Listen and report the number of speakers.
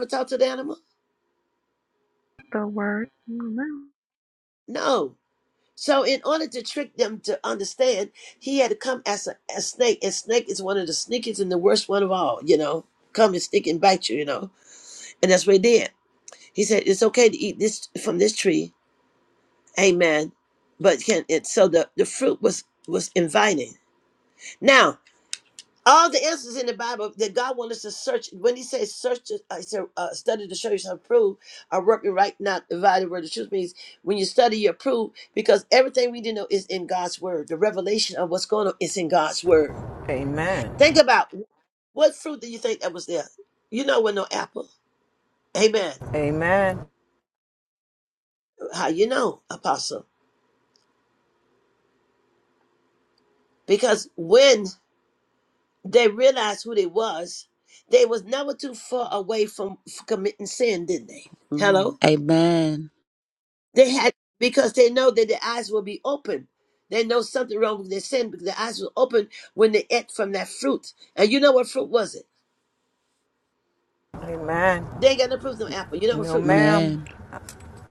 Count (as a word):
four